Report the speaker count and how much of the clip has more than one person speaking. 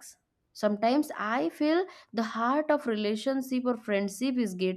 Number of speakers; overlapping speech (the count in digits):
1, no overlap